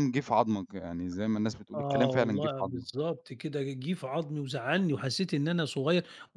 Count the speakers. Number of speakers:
2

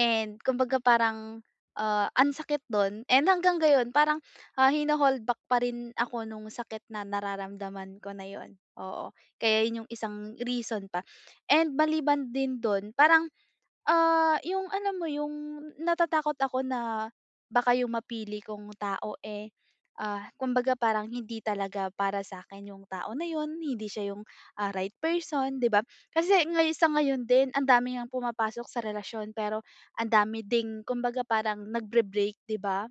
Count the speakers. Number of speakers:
1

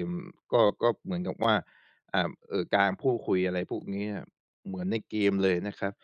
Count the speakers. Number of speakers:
1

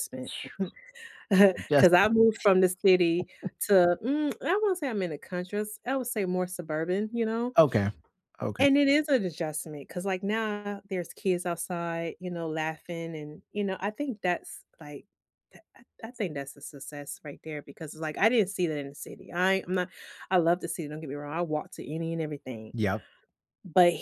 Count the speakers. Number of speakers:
2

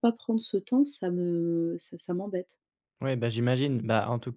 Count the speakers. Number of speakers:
2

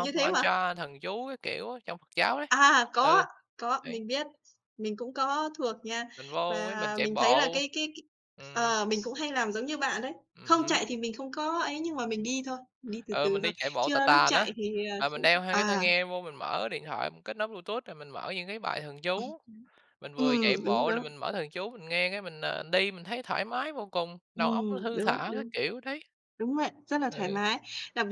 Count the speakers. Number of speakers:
2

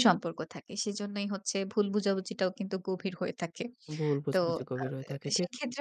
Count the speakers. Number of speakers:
2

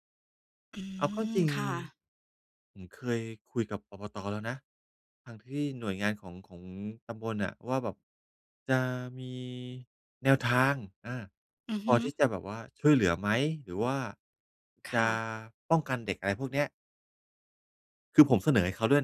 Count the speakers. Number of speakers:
2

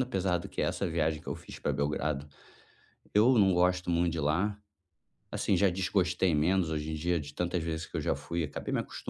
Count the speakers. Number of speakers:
1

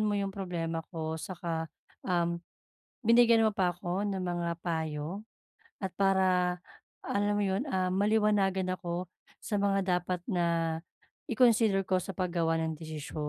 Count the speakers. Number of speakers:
1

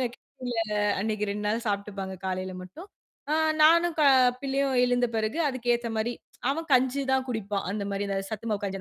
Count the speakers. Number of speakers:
1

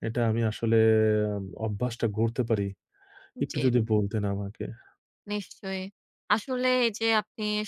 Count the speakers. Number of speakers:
2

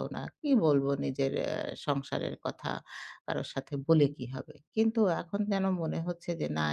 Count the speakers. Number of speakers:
1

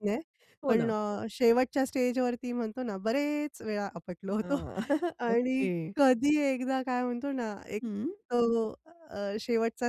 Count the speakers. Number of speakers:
2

